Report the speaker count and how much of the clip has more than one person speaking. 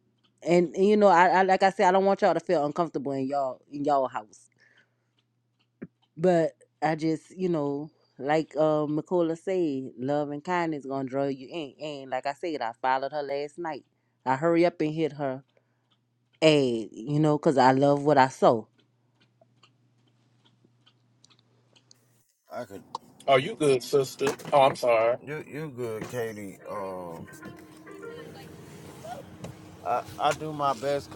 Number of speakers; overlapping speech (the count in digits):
3, no overlap